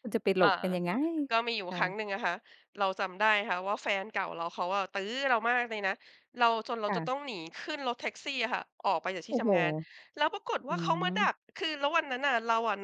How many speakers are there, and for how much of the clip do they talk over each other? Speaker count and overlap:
2, about 10%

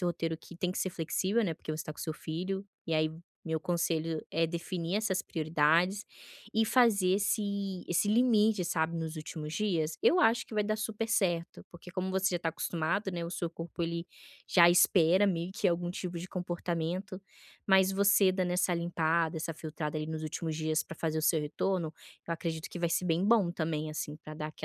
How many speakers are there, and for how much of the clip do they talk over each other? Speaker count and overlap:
1, no overlap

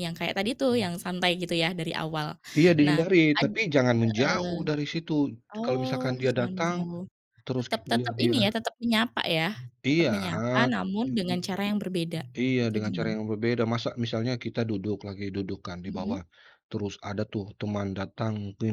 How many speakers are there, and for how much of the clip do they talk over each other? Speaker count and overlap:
2, about 24%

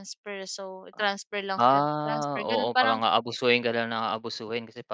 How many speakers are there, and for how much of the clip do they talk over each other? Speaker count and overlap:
2, about 29%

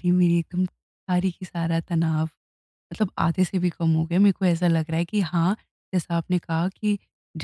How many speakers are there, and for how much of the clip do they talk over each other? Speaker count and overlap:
1, no overlap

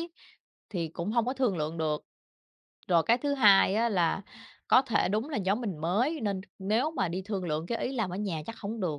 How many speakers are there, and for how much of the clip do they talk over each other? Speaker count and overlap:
1, no overlap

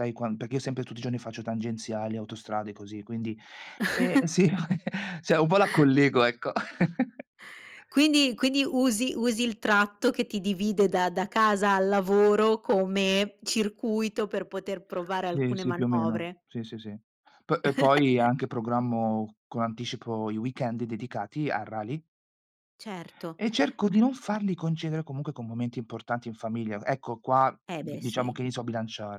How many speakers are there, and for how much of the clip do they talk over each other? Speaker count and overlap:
2, about 6%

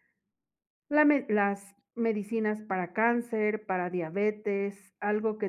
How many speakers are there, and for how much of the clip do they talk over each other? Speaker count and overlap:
1, no overlap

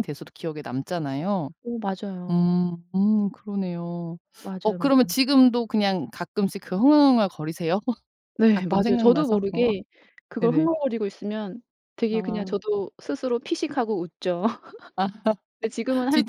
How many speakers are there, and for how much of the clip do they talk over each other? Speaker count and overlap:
2, about 13%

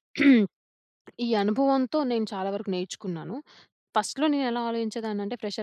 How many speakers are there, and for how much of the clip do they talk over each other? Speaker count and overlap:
1, no overlap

